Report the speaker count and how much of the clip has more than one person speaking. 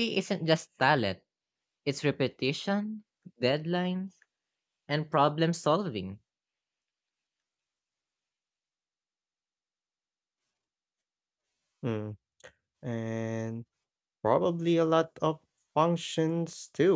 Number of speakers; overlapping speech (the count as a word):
two, no overlap